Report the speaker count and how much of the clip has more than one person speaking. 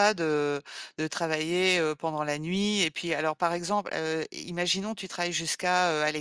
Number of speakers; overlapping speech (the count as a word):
one, no overlap